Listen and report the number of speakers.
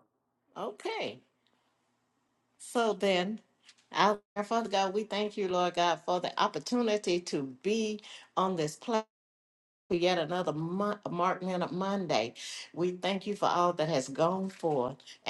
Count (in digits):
1